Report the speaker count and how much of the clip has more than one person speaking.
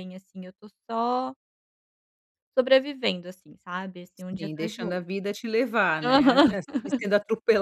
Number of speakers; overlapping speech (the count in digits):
2, about 9%